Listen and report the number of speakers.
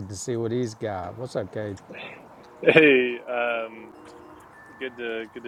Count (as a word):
two